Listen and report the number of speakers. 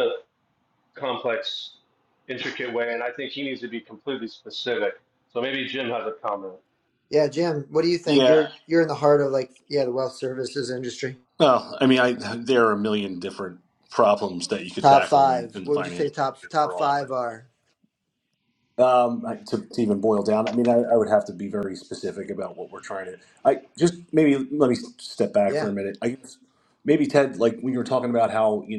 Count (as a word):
three